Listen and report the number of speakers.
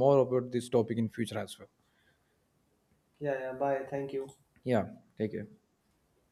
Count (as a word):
two